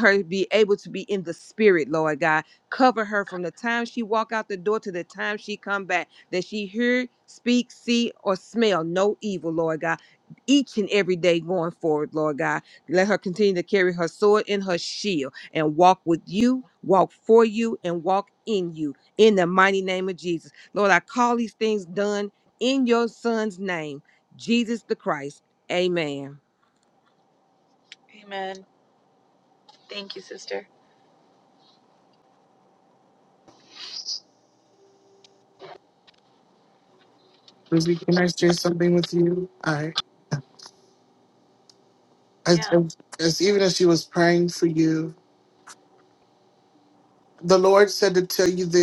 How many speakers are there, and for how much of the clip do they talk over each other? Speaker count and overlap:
three, about 1%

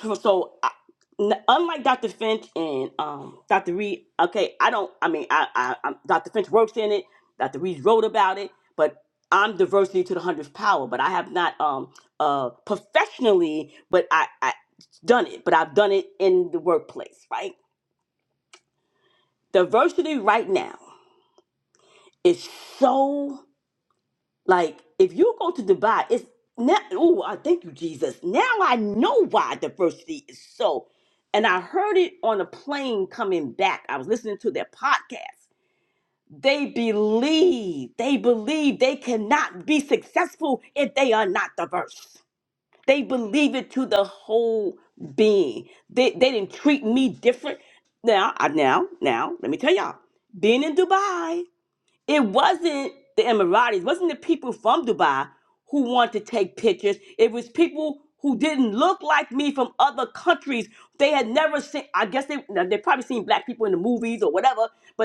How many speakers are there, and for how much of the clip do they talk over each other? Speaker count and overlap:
one, no overlap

